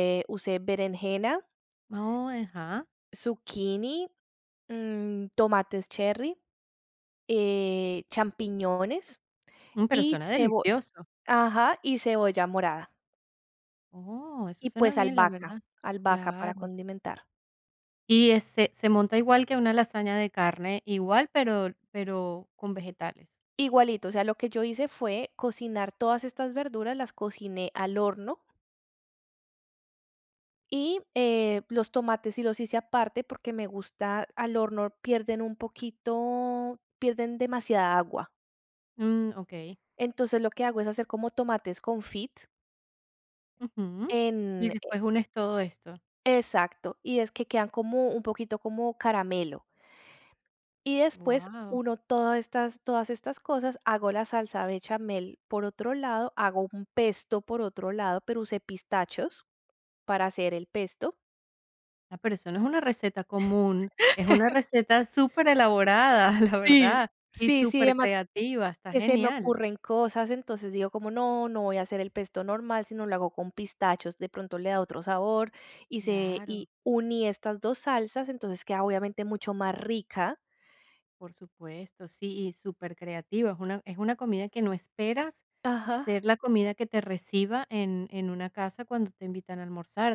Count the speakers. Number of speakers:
two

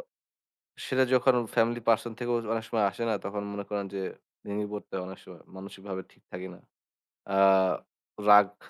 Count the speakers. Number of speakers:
one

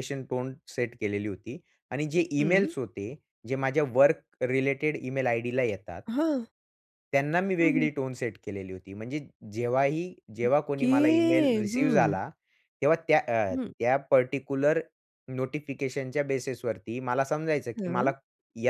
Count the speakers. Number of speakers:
two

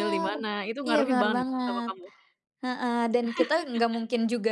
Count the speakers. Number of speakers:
two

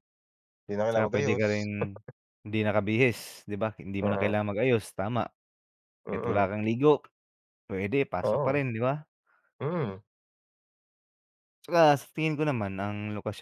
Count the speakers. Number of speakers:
two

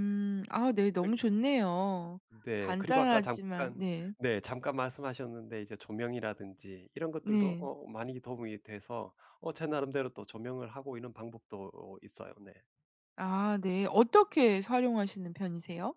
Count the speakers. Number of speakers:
two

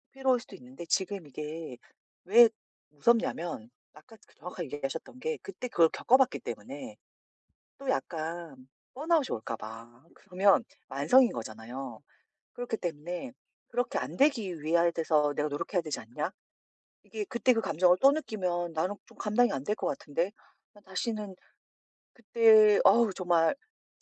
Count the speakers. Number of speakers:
one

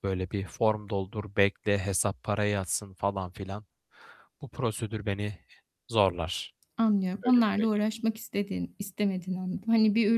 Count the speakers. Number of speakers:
two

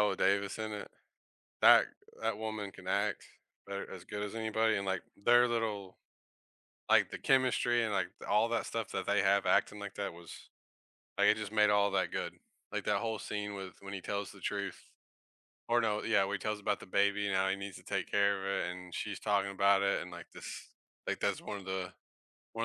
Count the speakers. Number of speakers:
one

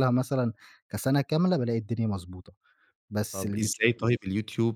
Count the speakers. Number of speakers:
two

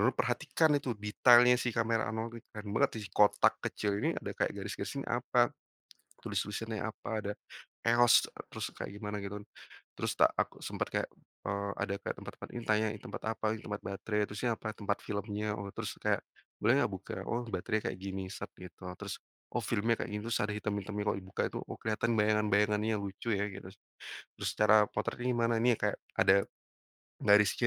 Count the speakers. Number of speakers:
one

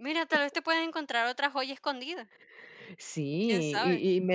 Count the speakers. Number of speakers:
two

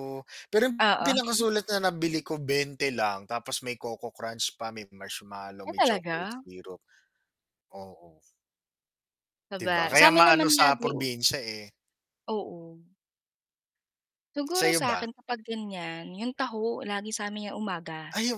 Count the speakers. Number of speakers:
two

